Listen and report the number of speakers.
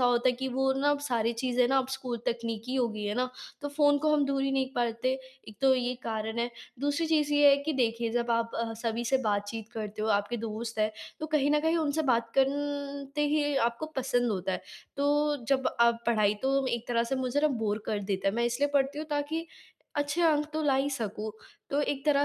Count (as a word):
one